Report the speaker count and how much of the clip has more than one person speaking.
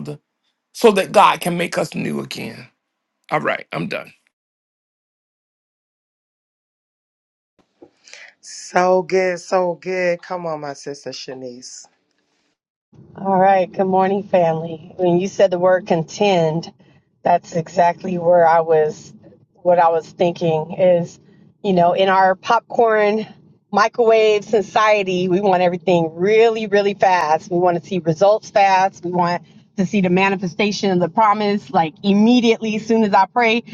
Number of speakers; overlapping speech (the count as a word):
three, no overlap